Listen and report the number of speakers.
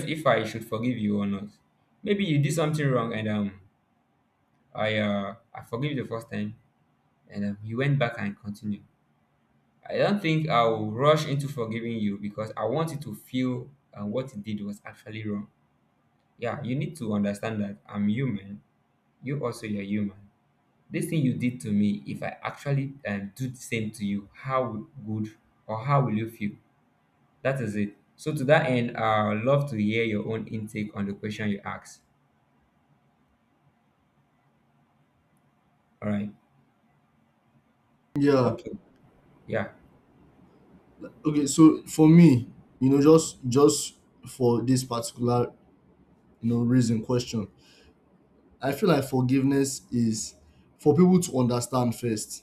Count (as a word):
two